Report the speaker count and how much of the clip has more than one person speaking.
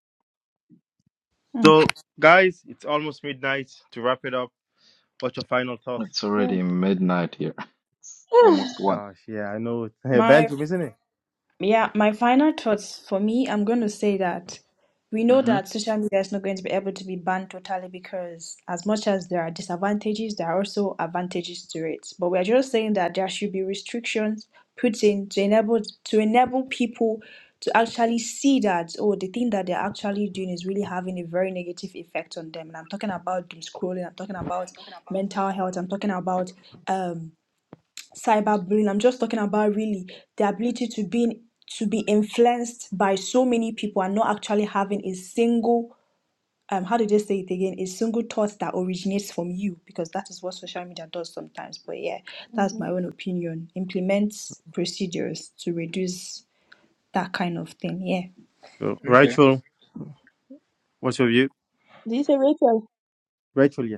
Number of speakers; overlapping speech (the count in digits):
4, about 3%